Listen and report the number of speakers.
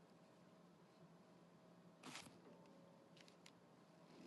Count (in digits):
0